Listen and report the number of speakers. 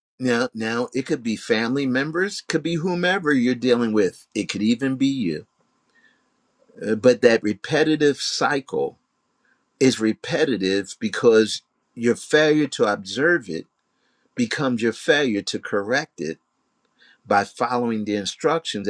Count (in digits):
1